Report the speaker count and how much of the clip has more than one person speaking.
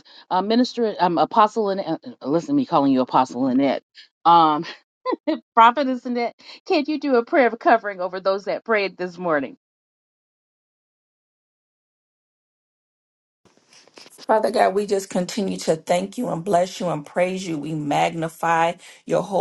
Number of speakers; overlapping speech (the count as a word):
two, no overlap